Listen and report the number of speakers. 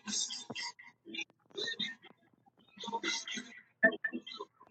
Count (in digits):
0